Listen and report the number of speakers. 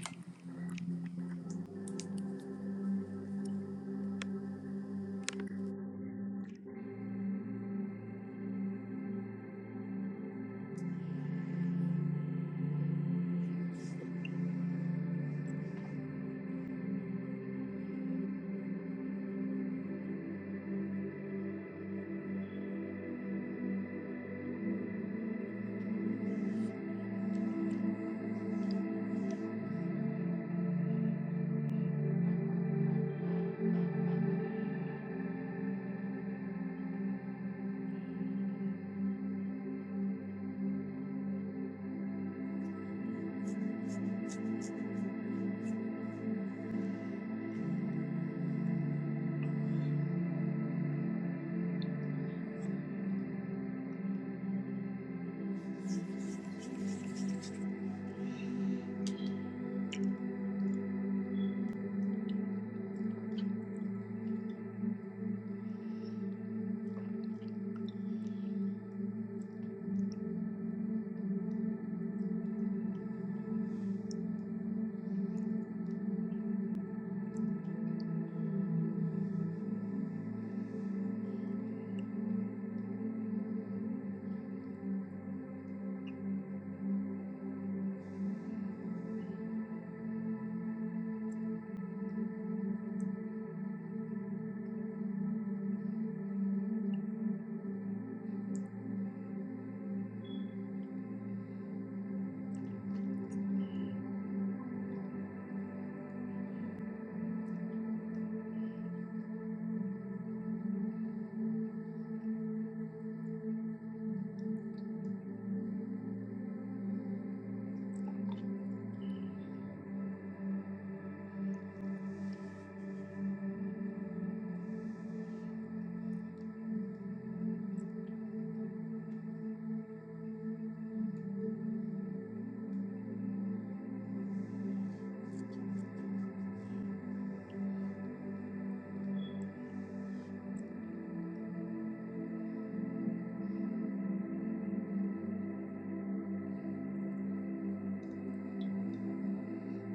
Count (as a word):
zero